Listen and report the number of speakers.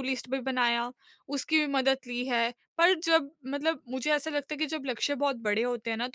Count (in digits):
1